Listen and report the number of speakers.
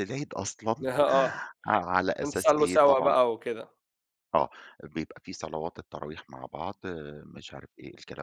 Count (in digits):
2